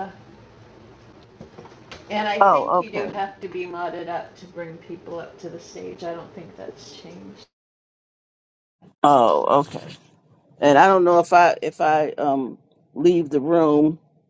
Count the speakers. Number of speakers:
2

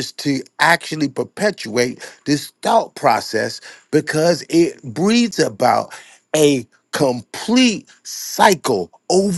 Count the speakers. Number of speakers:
1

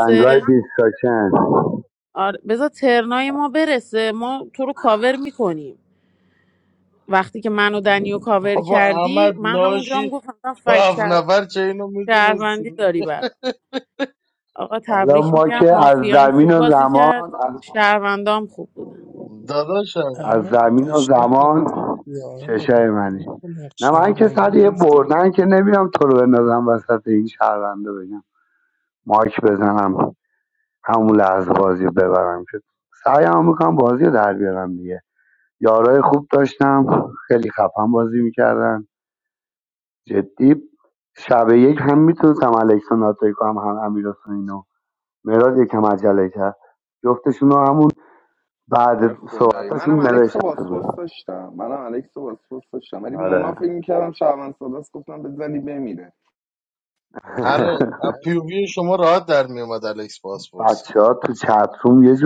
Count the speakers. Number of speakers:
5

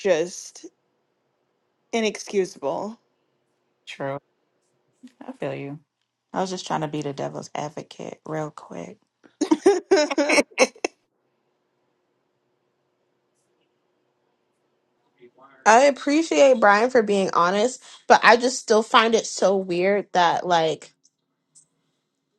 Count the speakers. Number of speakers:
3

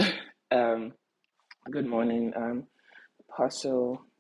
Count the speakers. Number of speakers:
1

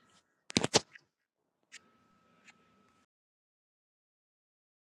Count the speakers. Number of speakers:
0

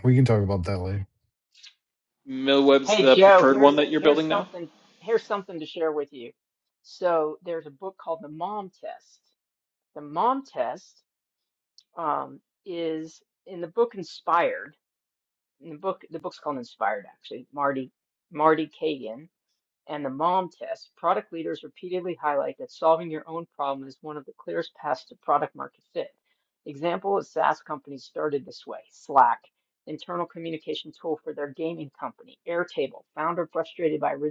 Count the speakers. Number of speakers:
3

